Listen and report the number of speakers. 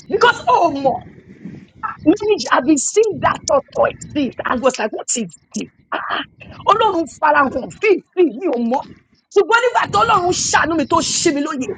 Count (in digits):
1